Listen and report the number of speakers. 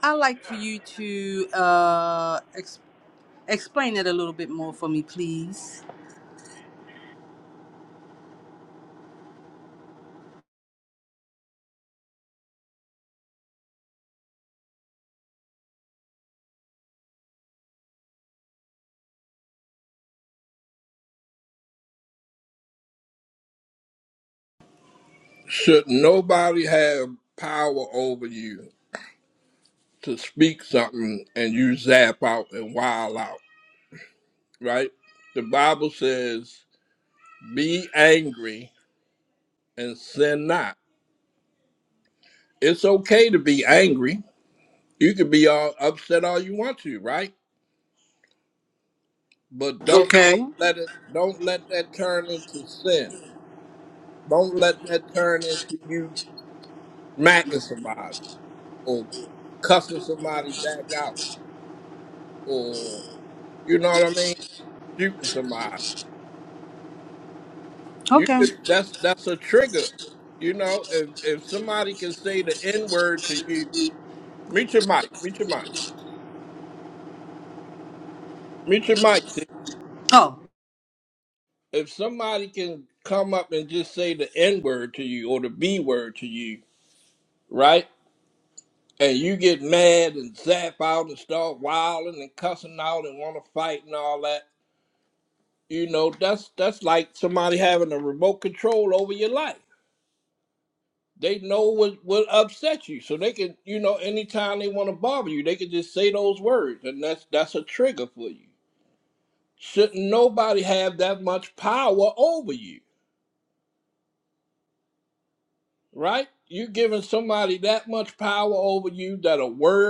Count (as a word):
two